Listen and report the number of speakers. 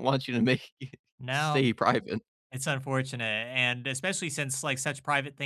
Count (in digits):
2